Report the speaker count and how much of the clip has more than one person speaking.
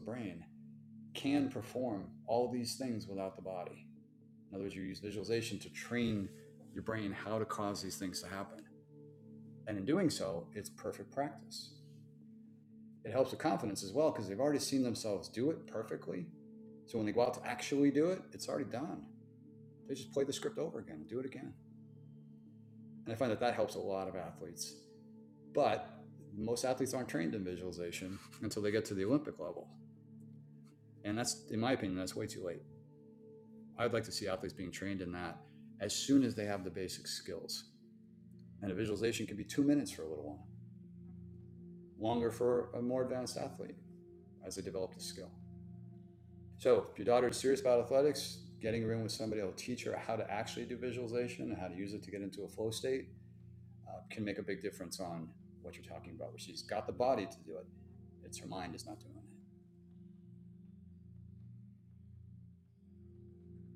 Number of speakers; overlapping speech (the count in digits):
1, no overlap